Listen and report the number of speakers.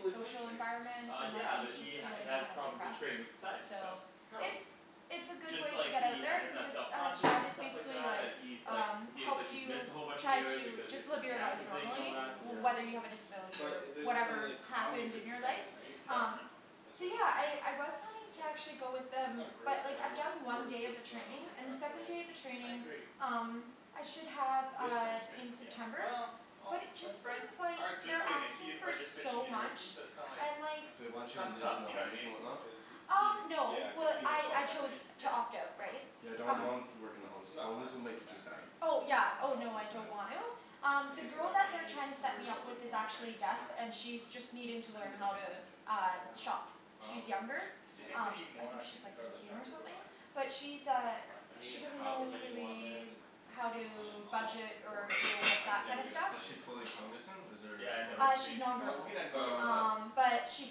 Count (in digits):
4